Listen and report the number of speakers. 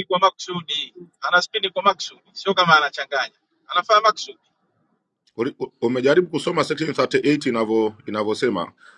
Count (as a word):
two